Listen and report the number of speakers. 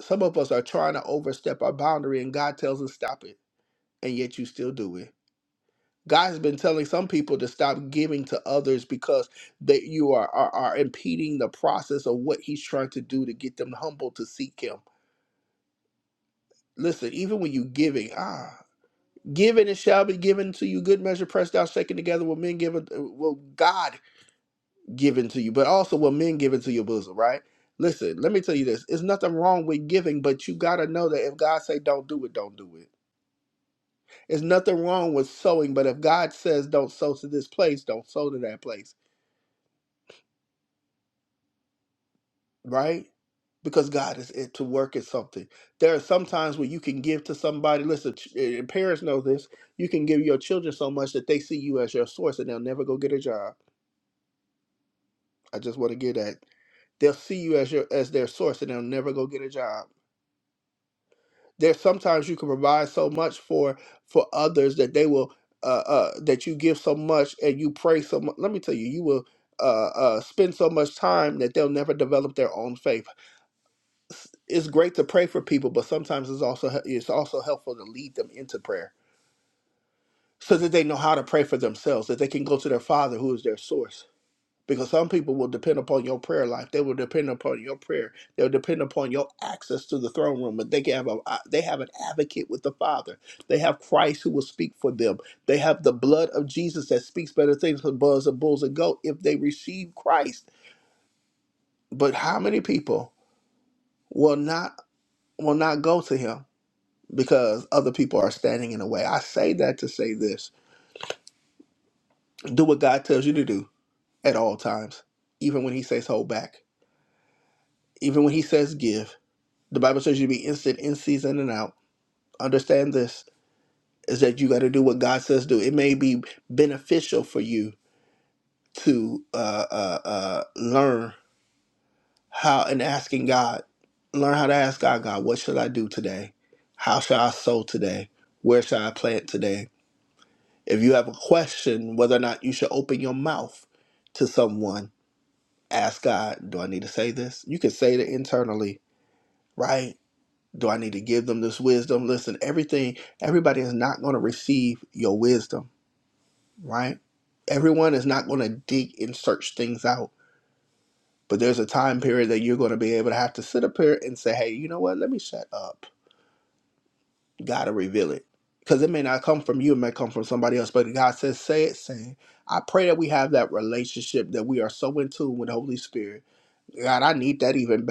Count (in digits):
1